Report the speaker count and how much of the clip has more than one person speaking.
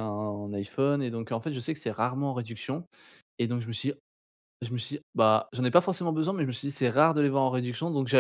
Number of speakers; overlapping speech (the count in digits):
1, no overlap